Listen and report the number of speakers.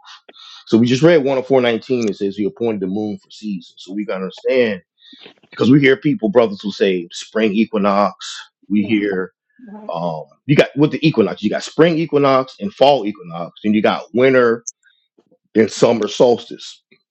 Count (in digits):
1